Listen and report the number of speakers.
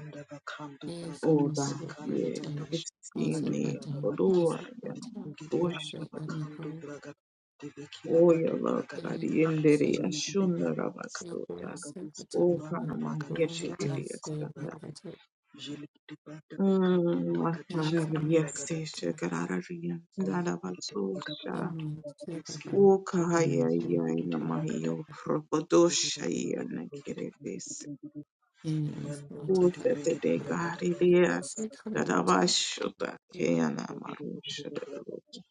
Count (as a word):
three